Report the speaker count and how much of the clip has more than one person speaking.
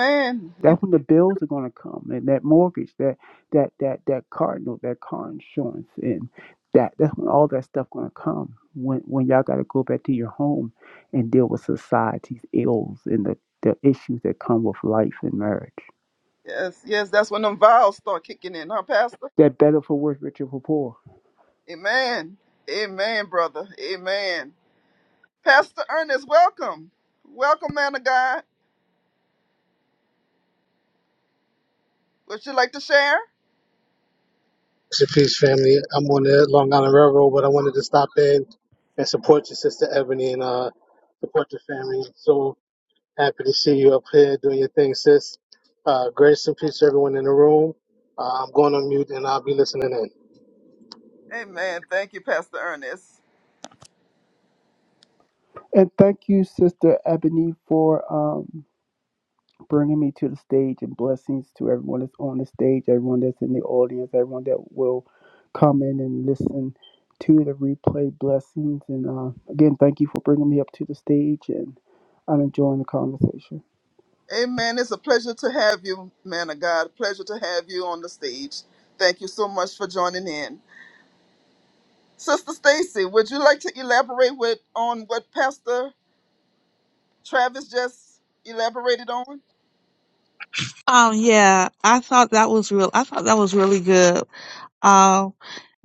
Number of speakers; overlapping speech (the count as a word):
four, under 1%